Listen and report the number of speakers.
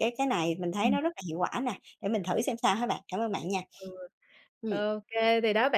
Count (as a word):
two